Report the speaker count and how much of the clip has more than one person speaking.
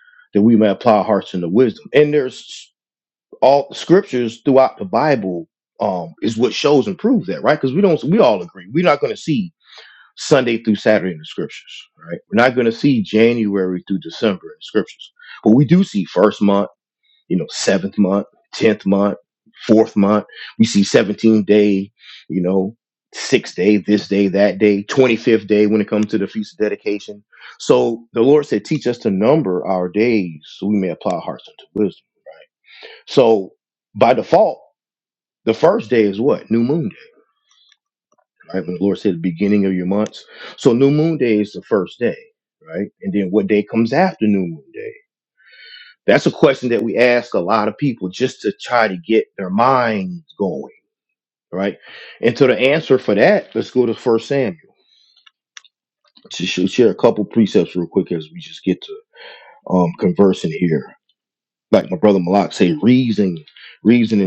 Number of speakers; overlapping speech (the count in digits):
1, no overlap